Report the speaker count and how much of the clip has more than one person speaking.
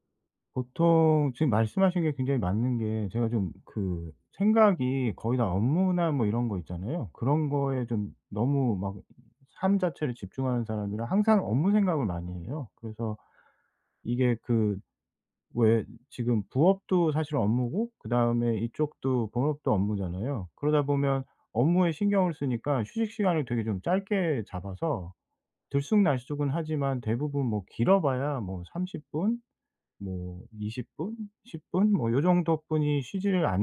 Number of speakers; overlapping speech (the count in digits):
1, no overlap